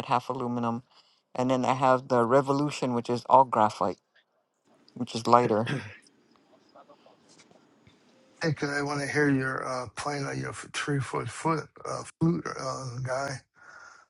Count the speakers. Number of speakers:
2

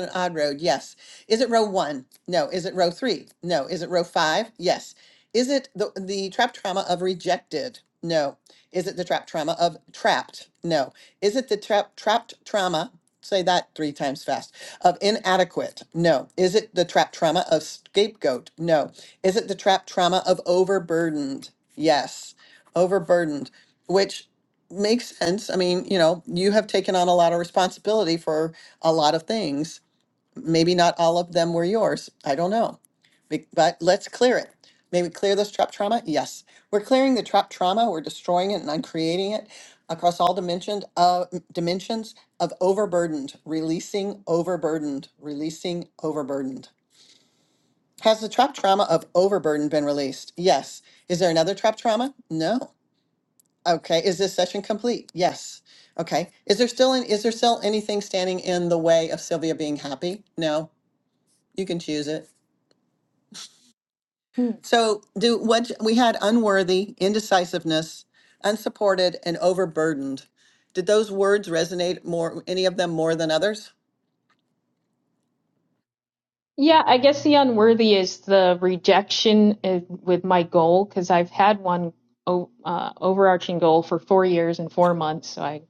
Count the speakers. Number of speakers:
2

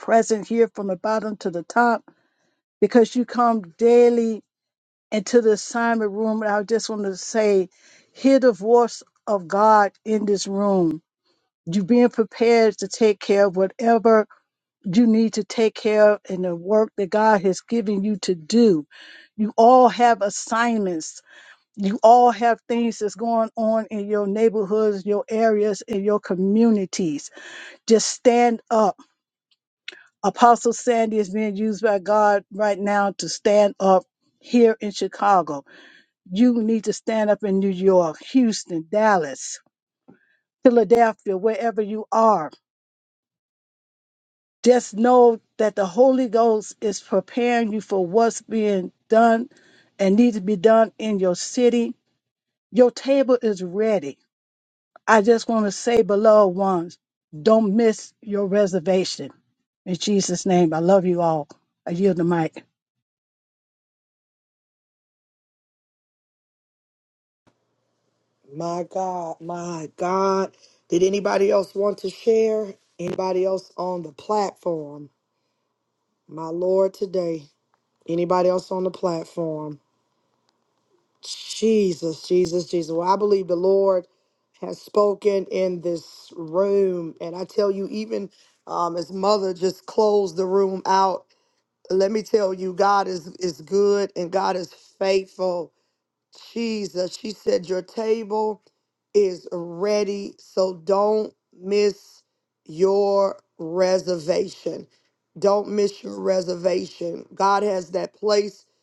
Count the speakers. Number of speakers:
2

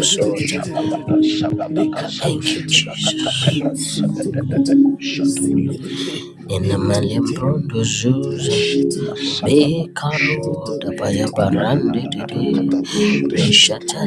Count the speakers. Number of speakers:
3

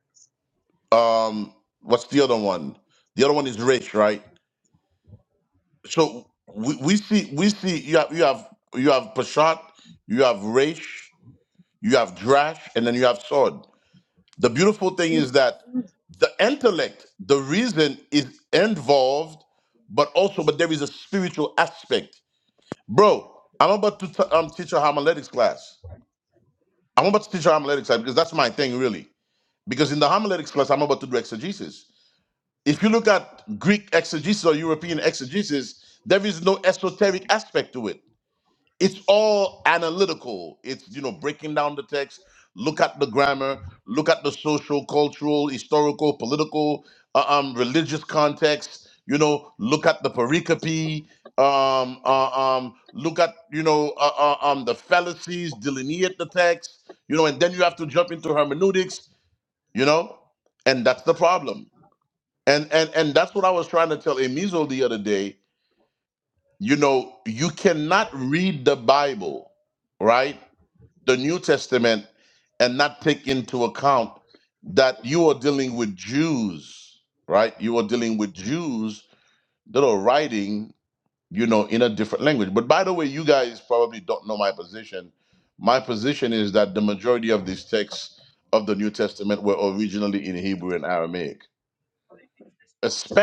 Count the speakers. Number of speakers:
1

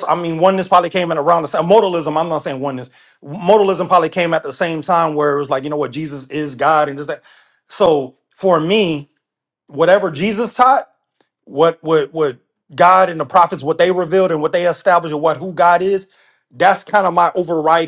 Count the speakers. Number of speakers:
1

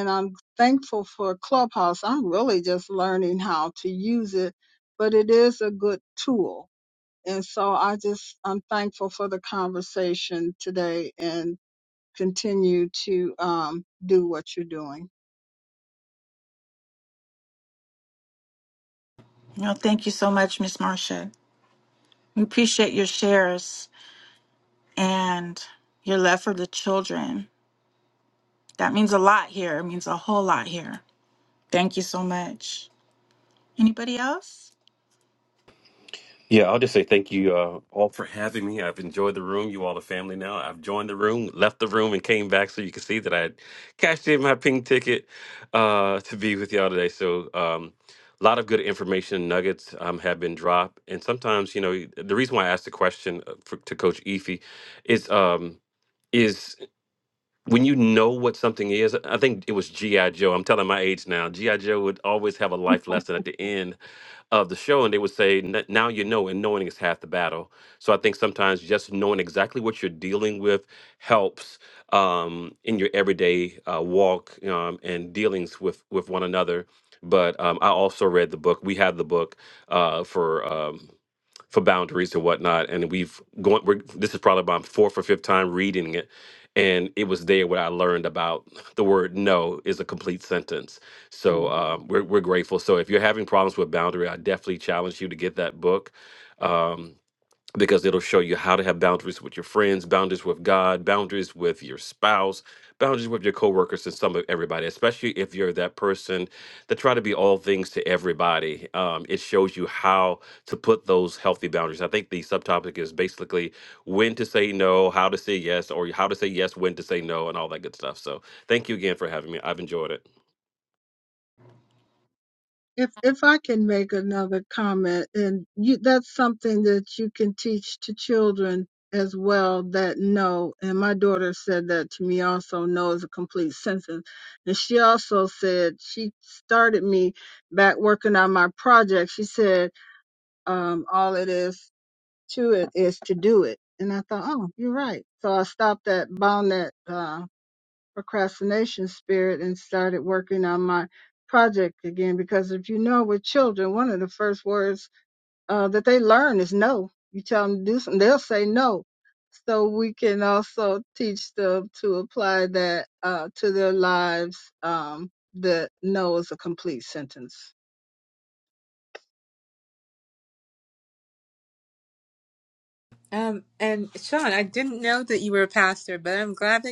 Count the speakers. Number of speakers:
4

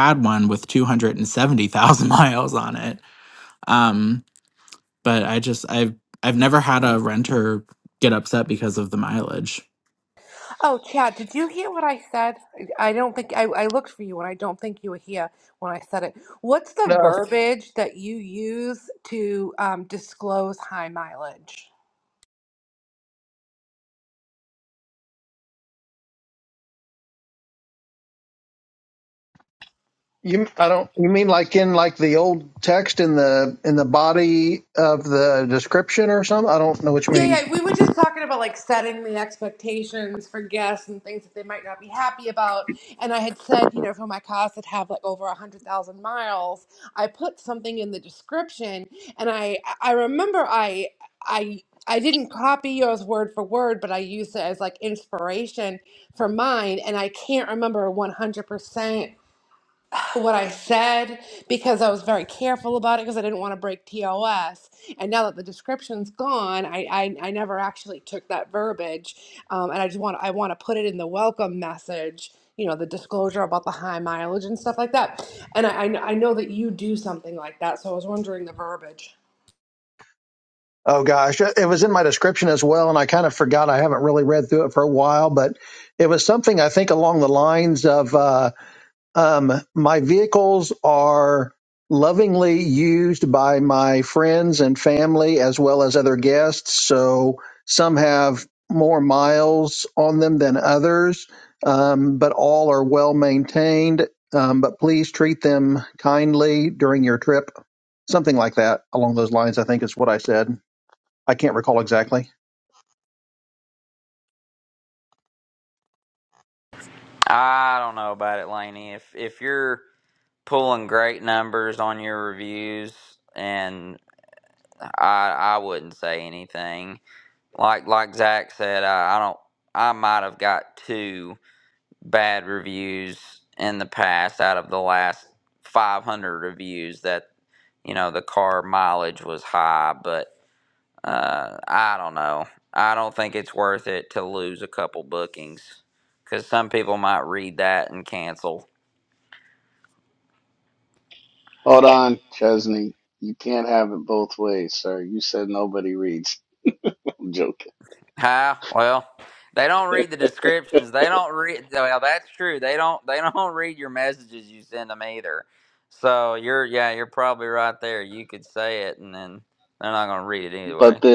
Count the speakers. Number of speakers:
5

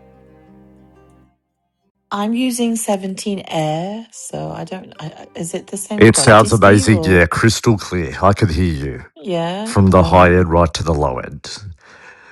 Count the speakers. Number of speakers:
2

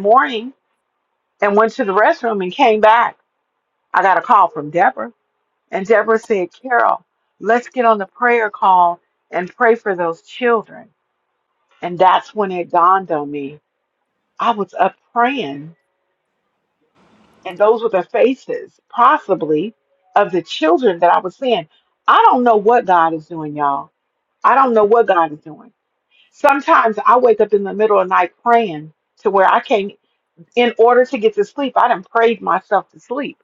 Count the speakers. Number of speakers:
1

